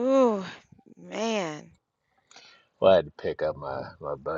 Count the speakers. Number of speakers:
2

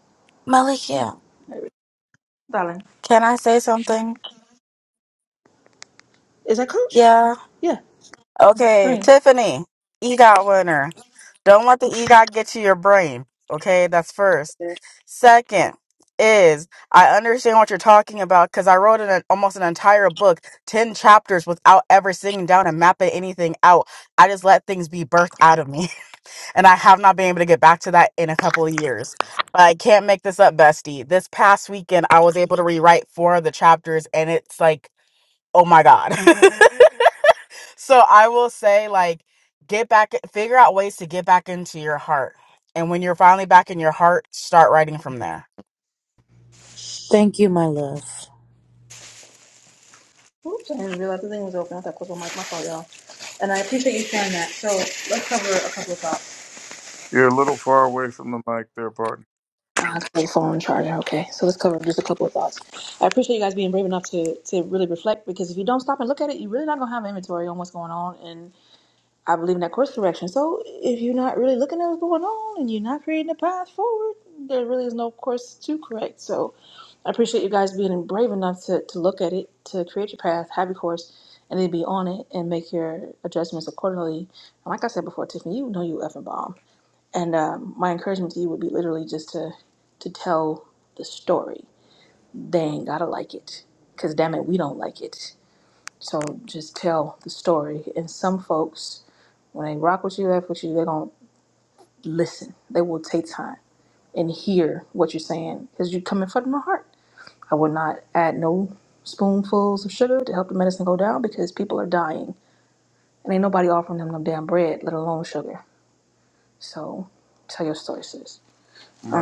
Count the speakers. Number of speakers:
4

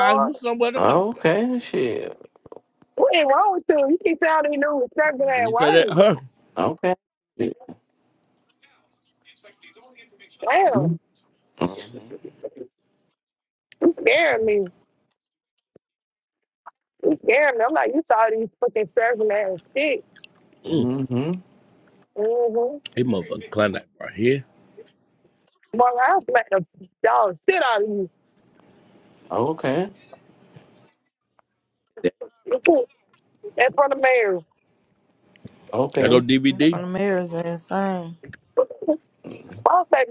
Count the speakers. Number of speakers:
4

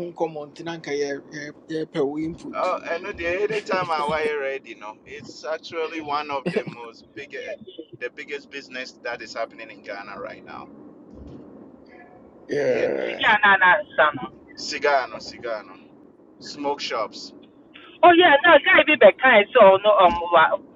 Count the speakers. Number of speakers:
3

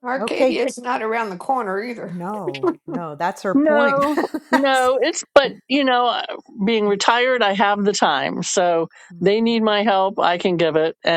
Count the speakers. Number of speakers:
3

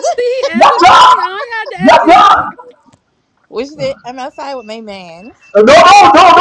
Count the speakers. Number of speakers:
3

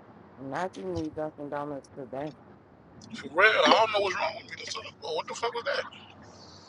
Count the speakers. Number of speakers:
2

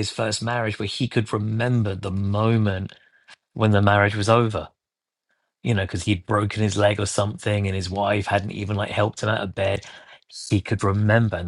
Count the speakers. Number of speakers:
1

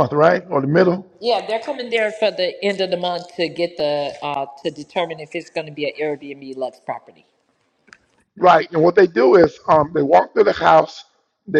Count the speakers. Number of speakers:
2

